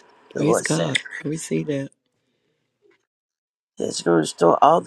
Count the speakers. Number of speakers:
2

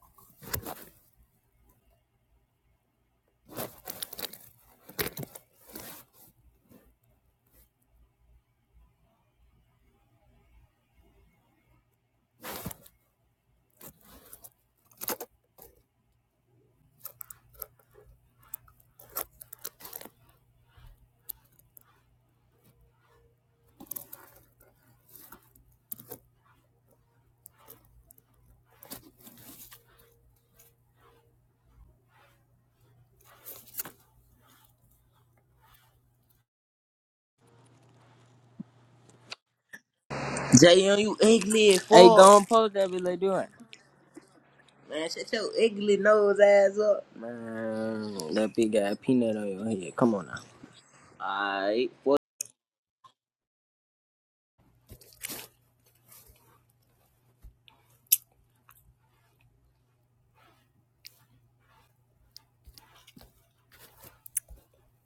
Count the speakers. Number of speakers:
2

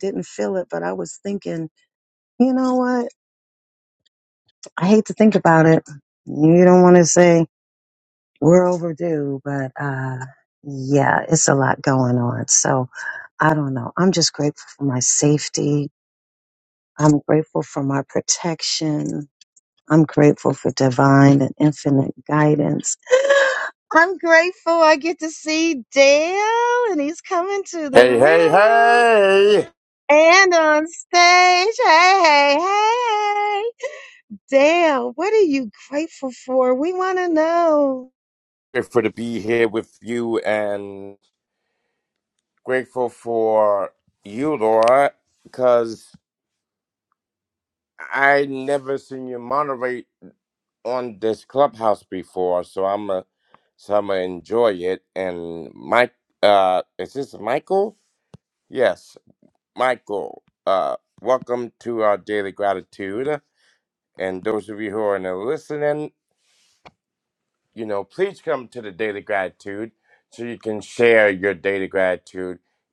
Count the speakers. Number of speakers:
2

